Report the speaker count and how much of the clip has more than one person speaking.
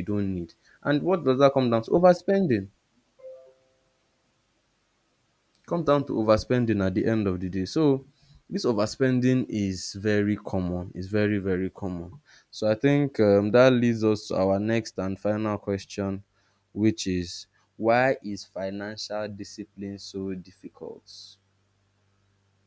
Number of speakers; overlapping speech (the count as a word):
one, no overlap